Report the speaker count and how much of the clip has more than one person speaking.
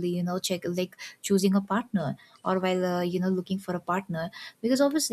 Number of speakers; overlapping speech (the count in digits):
1, no overlap